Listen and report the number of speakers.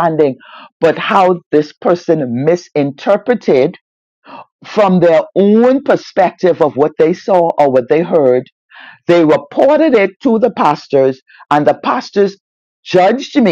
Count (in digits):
1